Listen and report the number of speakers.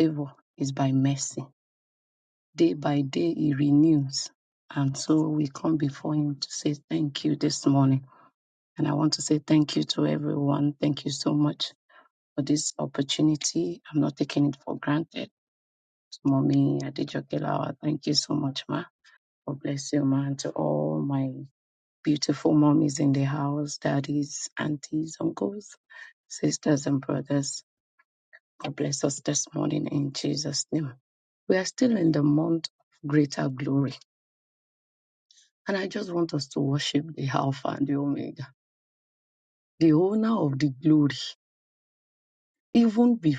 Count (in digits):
1